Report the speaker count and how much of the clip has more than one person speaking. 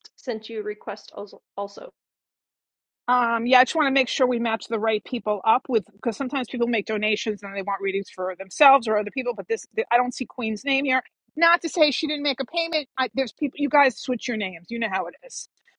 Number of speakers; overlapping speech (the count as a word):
two, no overlap